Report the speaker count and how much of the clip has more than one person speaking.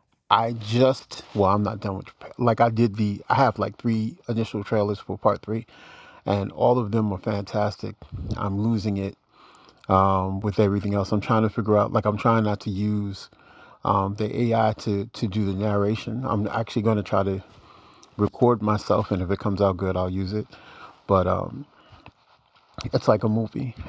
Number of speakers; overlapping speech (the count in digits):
1, no overlap